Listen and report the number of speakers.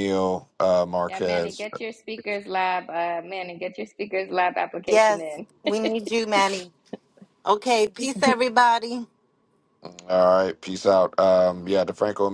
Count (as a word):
three